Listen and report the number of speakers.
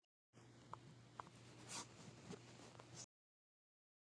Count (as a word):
zero